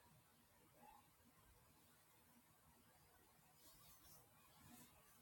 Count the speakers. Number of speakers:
zero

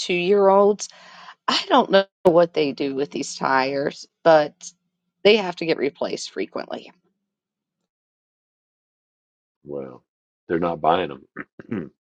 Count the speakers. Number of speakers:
two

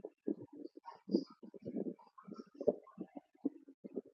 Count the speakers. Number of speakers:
zero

